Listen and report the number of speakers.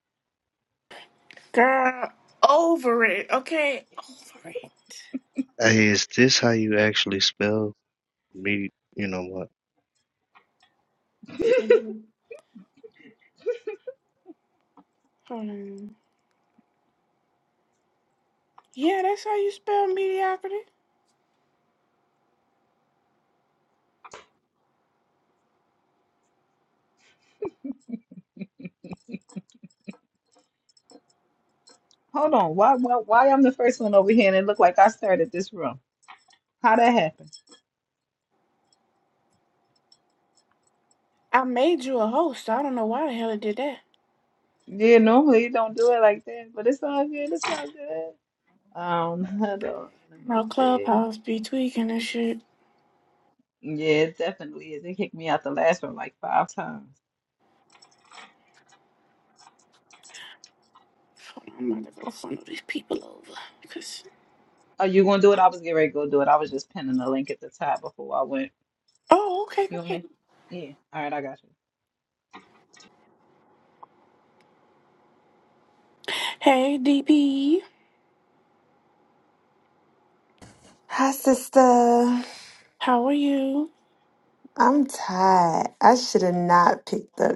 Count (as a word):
four